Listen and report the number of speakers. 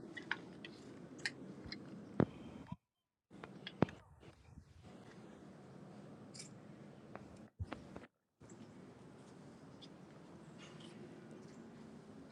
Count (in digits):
0